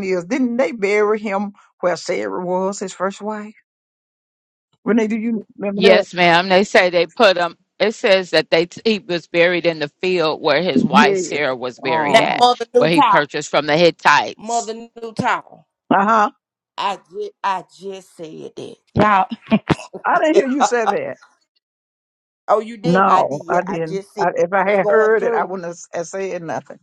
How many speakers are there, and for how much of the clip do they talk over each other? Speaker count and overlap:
3, about 16%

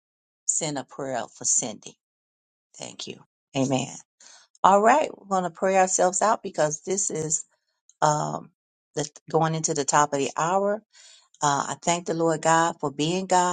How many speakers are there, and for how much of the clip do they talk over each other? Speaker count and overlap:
1, no overlap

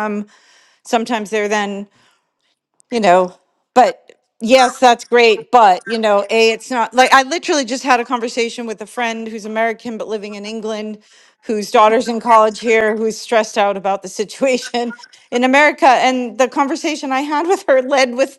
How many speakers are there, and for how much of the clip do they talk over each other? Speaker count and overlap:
1, no overlap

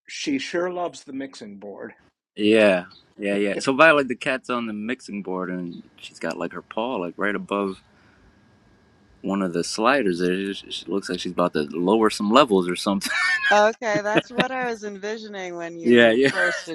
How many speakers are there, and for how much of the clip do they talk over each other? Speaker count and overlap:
3, about 3%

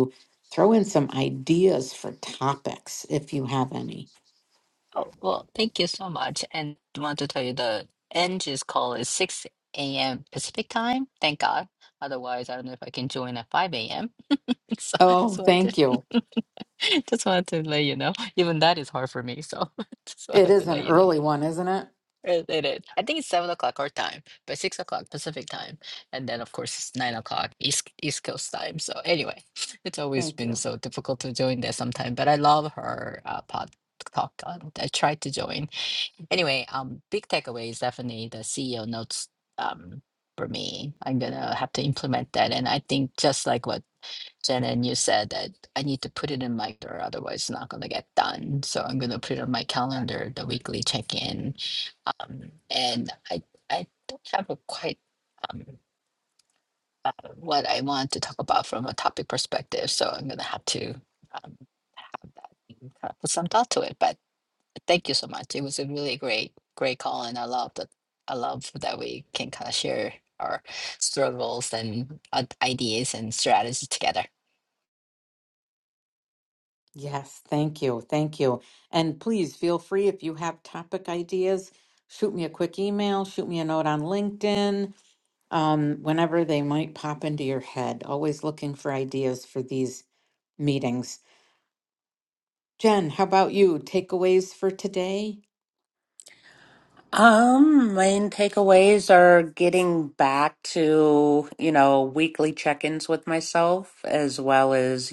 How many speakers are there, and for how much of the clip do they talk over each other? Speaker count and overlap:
3, about 2%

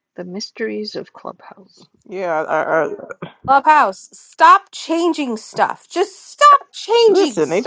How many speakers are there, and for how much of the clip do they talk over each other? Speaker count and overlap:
3, about 4%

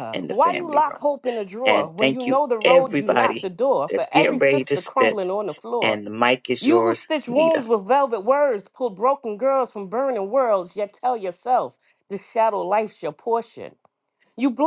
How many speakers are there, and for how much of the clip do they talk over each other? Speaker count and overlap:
2, about 34%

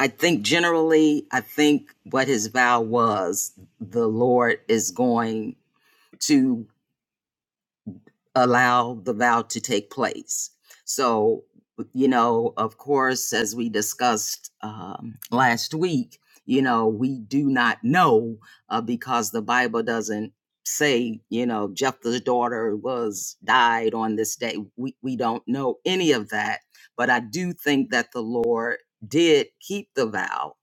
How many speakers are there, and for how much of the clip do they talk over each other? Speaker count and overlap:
1, no overlap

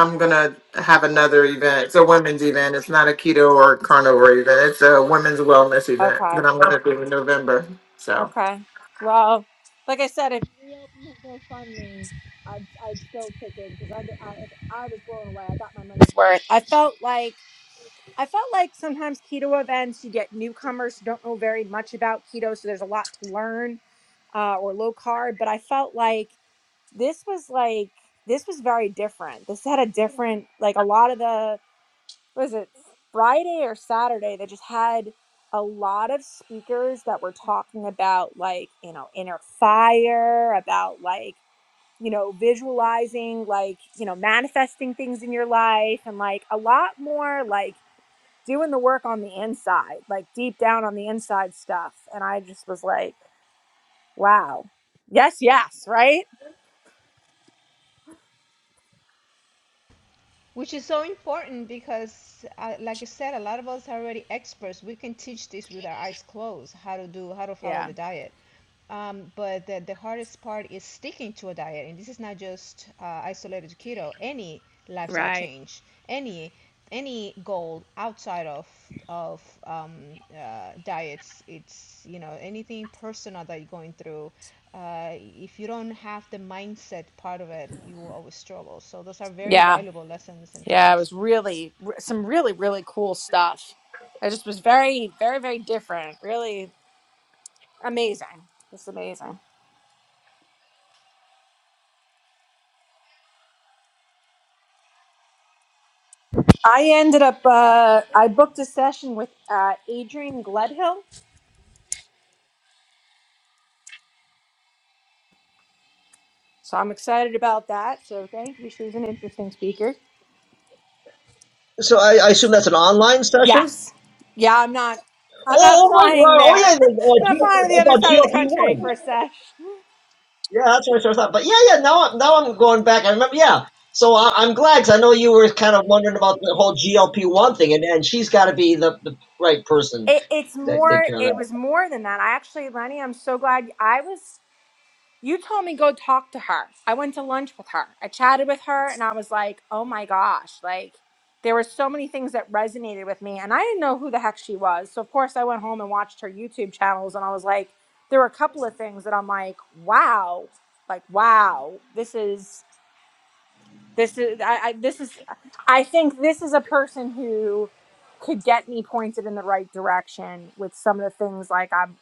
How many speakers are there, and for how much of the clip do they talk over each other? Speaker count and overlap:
4, about 4%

